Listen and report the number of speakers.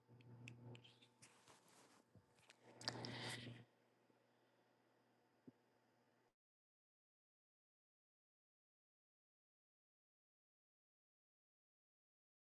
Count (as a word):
zero